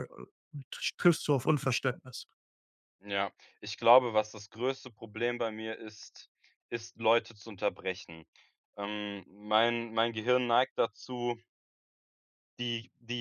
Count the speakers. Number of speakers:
2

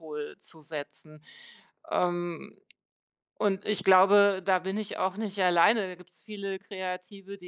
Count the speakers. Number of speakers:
1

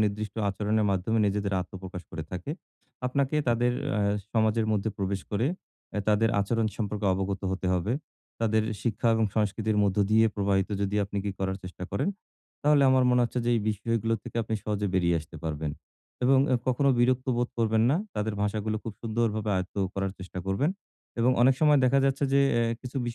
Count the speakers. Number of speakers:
1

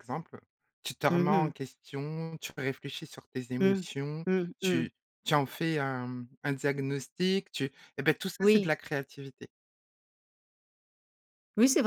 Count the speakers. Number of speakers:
2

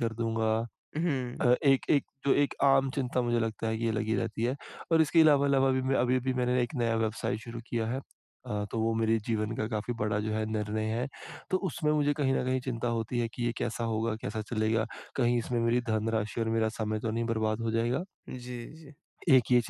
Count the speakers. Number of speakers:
2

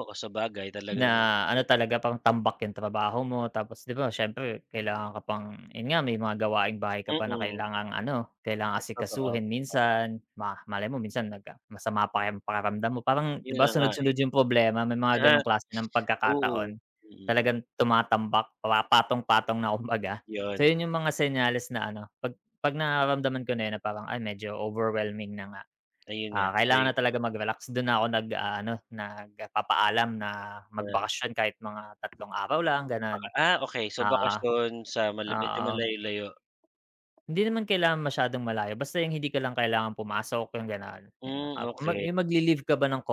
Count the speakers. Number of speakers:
2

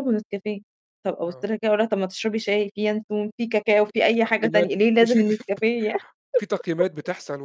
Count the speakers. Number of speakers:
2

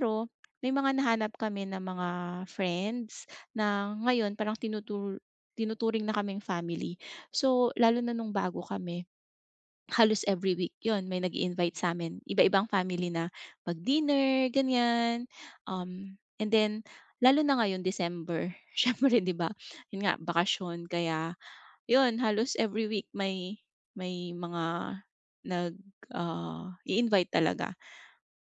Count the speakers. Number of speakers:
1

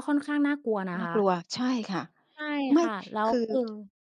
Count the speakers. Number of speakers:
2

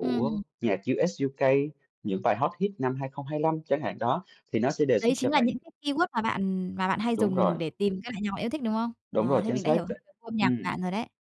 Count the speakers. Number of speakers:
2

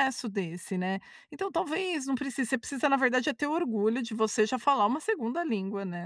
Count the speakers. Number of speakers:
1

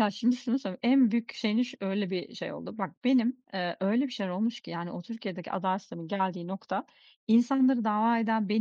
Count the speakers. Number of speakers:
1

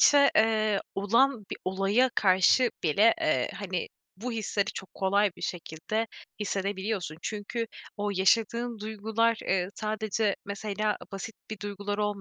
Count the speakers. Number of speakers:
1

